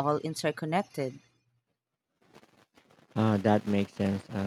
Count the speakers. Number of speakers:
two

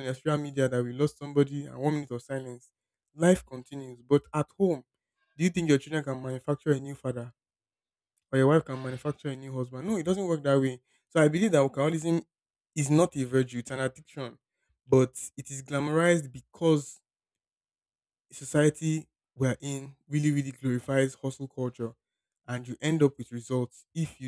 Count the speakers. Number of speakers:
one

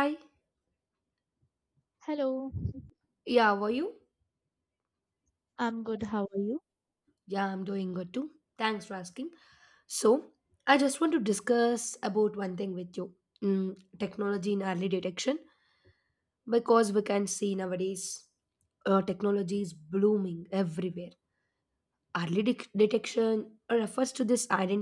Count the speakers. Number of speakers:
two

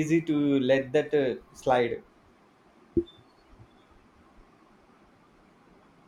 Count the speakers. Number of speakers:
one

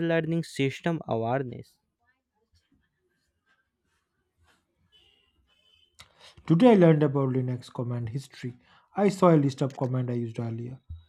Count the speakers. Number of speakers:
two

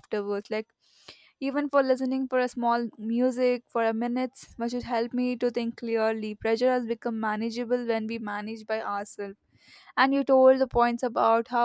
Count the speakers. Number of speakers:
one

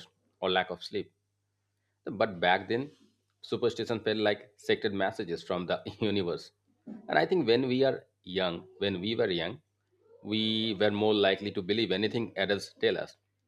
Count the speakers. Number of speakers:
one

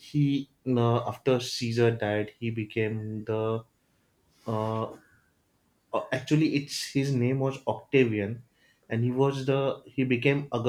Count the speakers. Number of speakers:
one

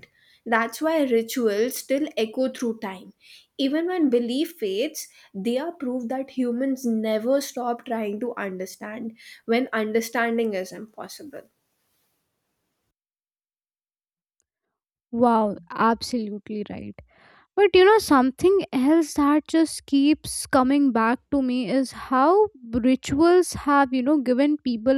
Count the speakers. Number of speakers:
two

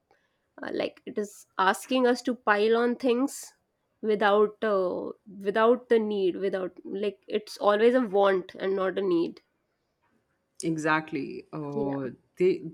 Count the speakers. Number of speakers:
two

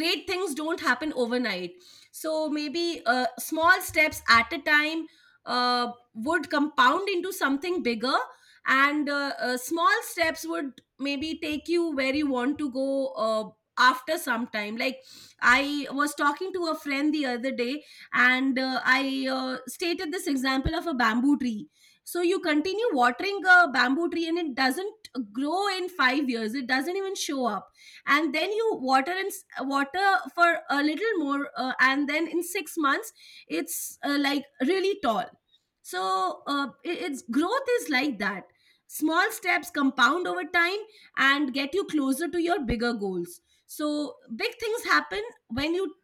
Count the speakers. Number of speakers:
one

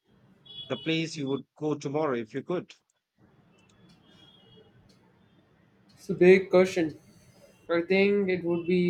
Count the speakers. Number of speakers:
two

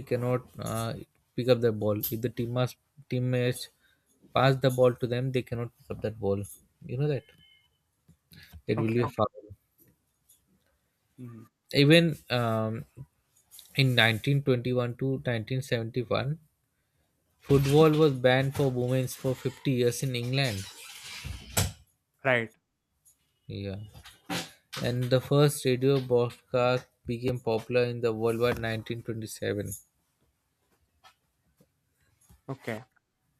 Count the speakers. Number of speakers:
two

